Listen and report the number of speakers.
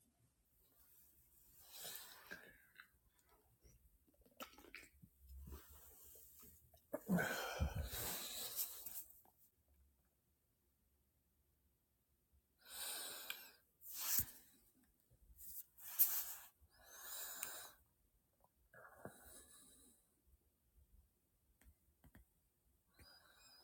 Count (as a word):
zero